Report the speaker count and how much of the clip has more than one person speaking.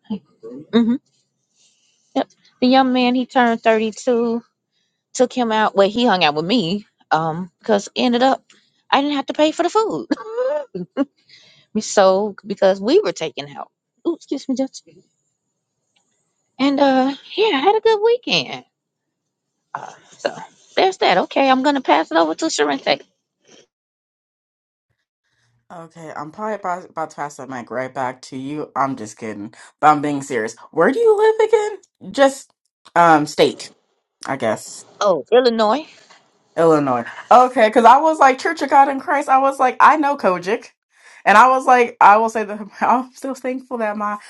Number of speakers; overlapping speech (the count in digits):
2, no overlap